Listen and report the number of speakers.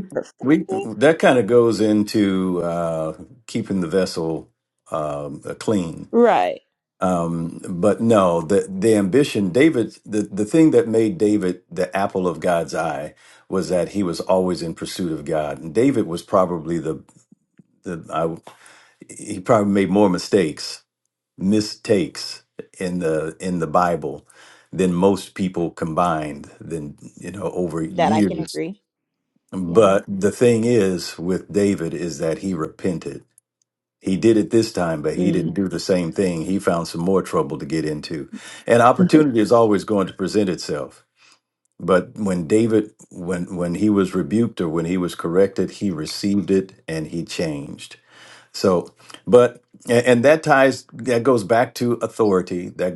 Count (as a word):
two